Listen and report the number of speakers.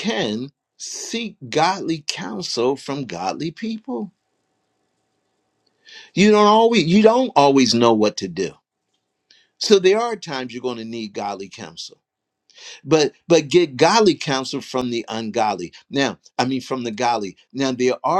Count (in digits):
1